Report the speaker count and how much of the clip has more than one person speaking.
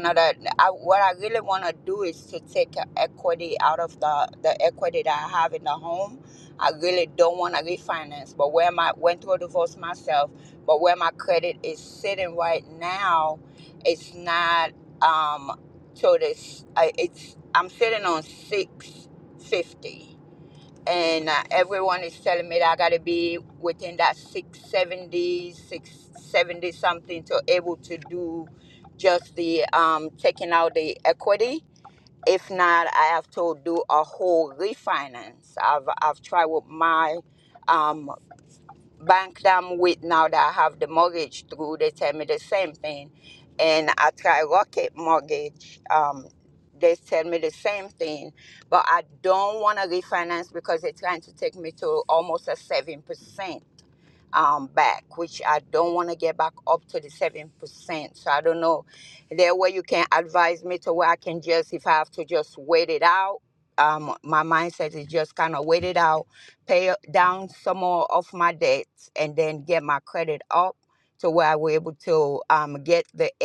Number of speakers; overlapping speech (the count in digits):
1, no overlap